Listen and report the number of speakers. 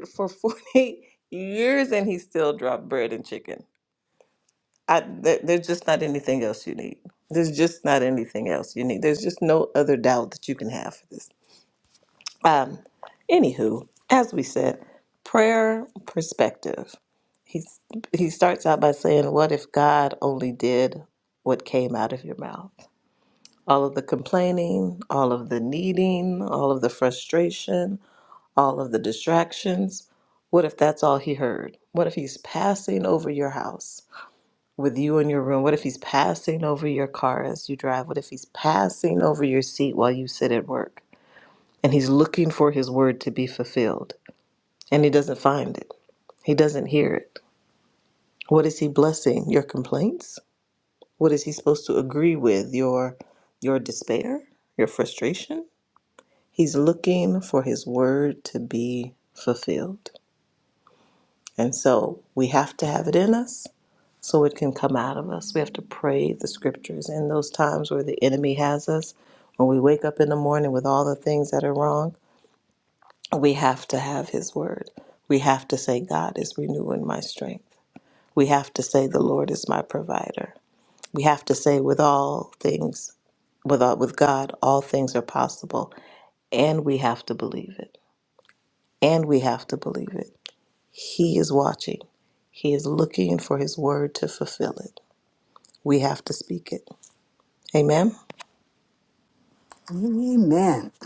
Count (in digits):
2